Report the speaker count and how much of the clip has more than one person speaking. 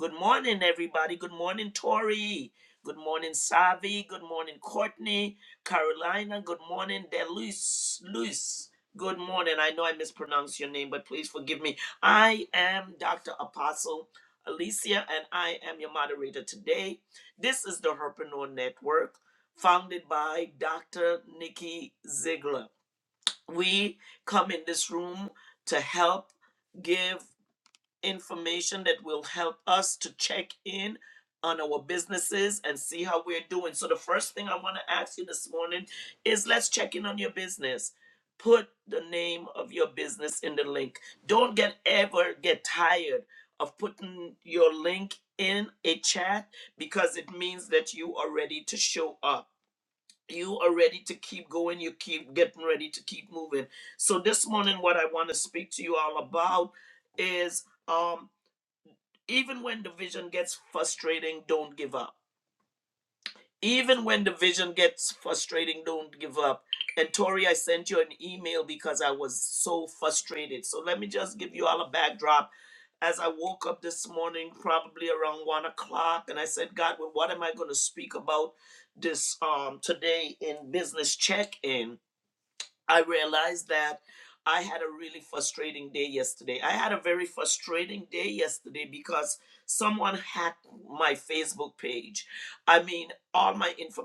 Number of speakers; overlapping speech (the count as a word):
one, no overlap